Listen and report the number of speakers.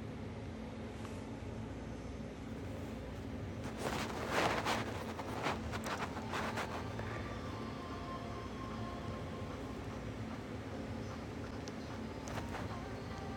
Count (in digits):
0